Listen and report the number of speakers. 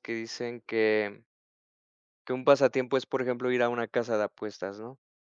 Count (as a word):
one